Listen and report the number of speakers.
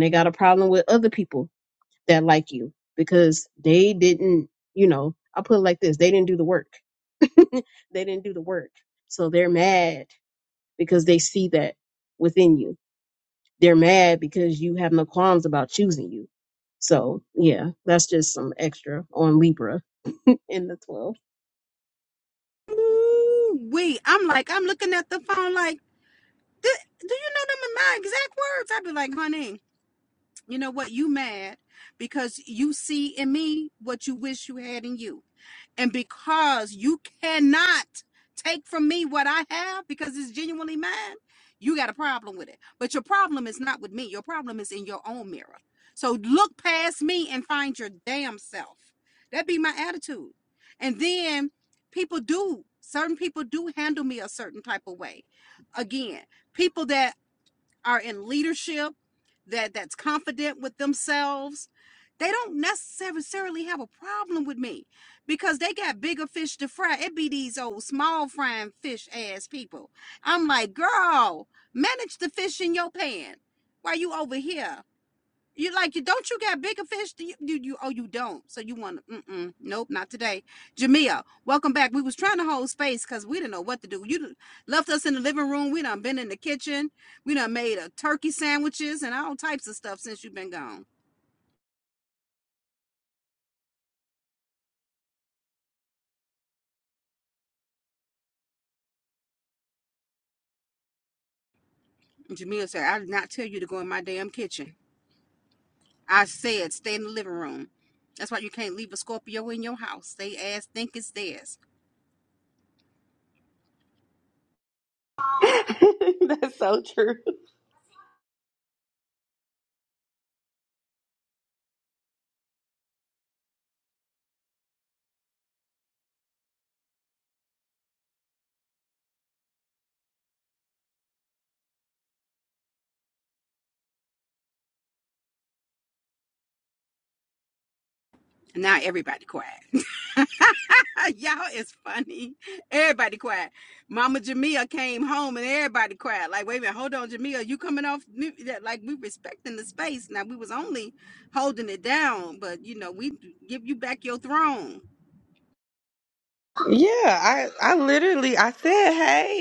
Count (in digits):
3